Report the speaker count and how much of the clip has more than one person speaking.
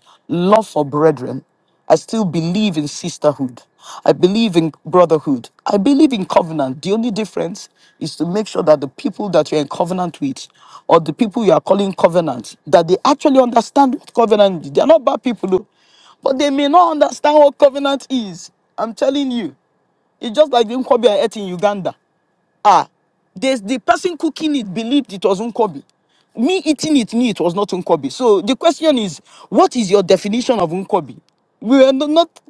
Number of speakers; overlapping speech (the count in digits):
1, no overlap